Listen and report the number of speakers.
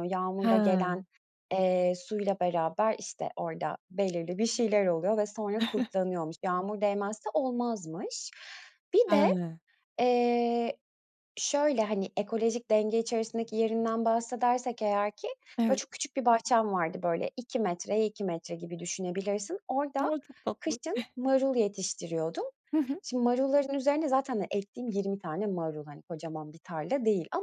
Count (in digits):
2